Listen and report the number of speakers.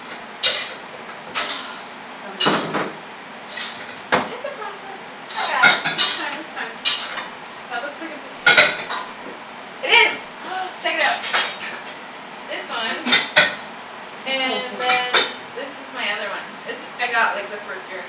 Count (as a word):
two